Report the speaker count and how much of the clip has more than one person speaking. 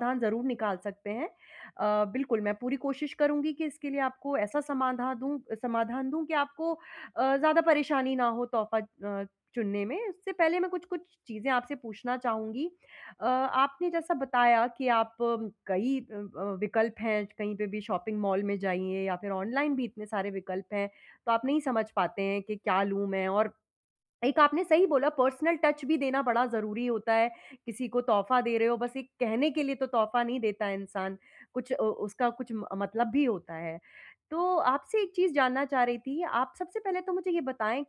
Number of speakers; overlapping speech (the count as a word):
one, no overlap